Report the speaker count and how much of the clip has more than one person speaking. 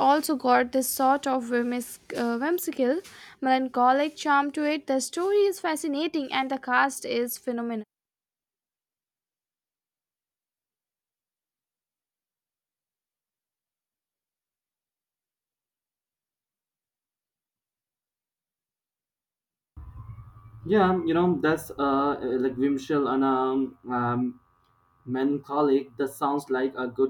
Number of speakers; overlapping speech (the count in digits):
2, no overlap